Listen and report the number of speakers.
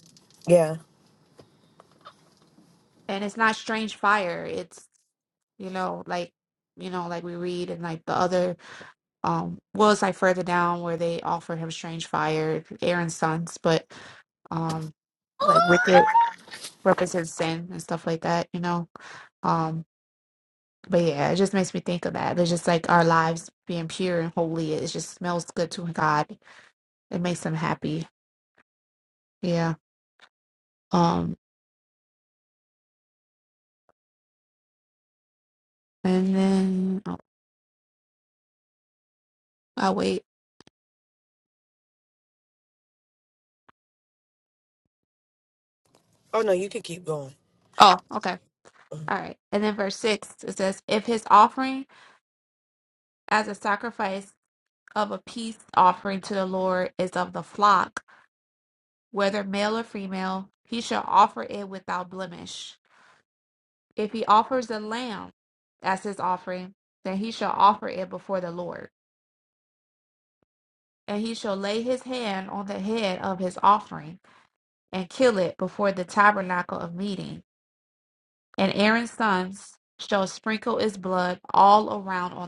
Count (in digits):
2